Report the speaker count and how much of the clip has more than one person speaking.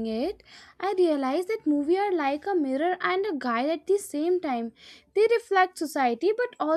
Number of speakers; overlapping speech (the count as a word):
one, no overlap